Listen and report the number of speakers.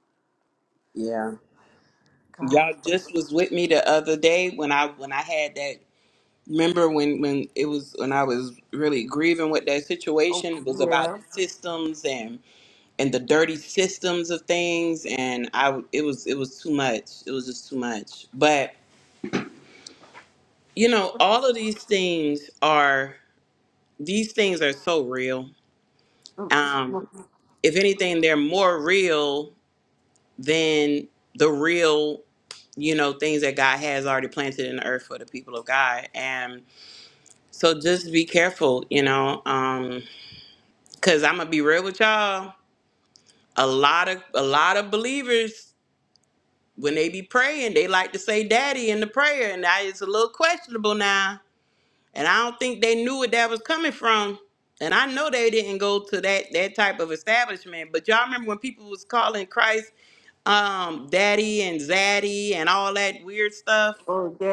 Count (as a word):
two